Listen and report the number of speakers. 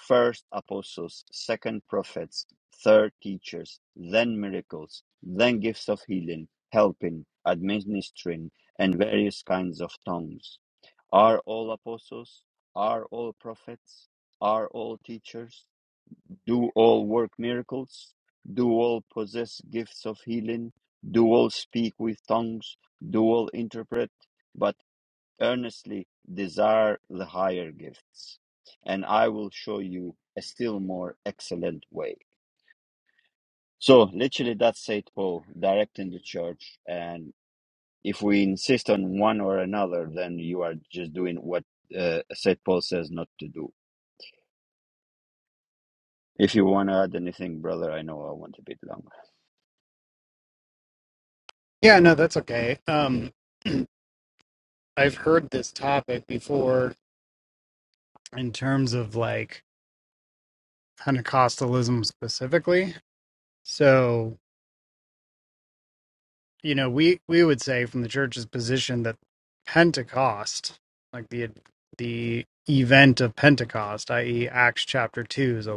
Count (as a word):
two